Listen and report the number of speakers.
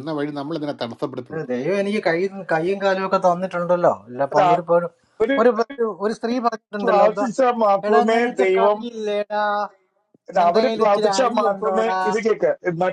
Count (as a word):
three